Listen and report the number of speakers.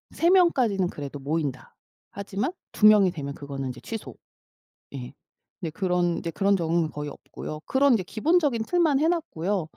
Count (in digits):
1